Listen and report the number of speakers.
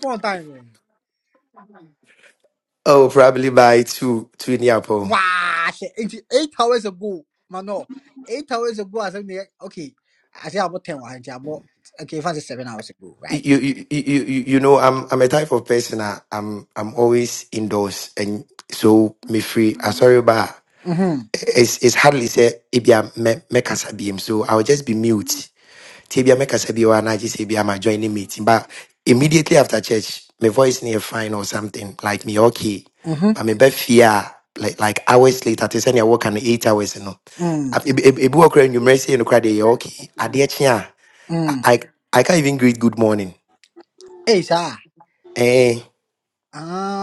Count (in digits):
2